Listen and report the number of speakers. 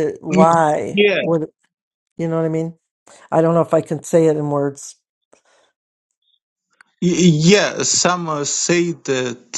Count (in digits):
2